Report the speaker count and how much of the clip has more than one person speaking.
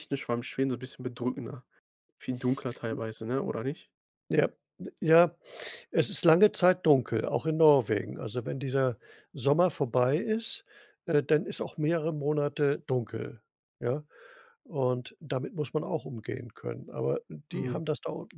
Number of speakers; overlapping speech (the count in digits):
2, about 2%